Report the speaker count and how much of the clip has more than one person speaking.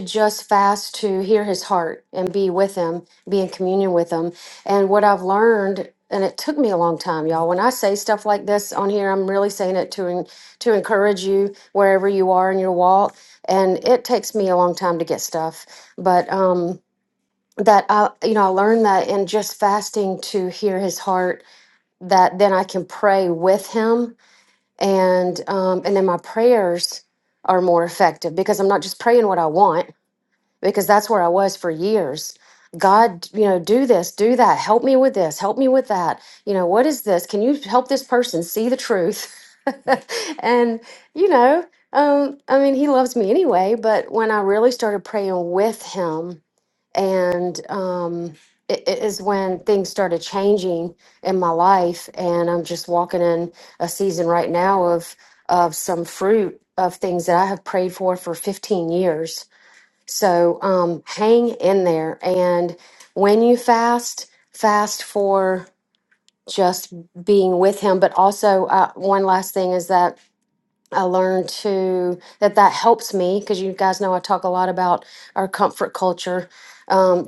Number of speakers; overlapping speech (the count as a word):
one, no overlap